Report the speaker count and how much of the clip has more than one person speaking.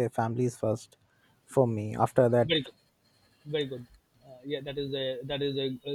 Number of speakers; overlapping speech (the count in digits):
2, about 1%